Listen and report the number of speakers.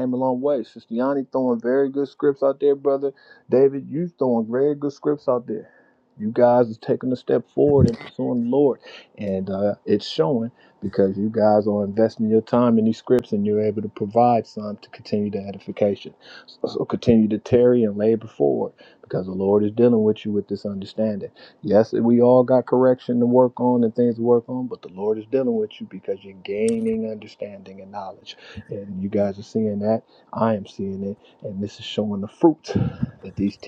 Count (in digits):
1